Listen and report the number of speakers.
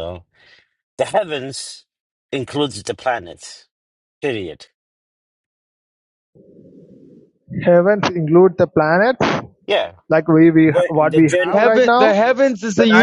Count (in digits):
3